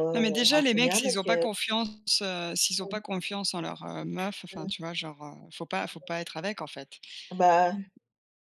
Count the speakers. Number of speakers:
2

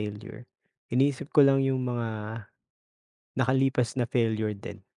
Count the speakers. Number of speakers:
1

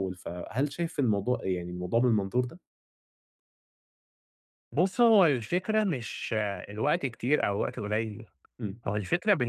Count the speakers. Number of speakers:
2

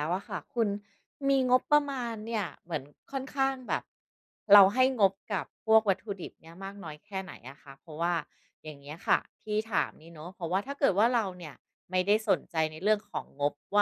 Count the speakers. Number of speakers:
1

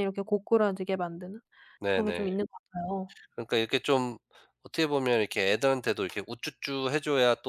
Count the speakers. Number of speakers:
2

